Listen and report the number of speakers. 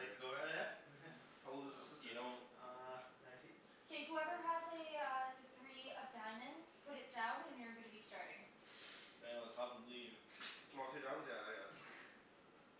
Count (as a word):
four